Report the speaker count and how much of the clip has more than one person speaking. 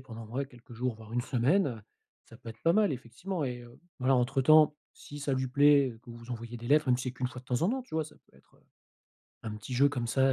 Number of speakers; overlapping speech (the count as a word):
one, no overlap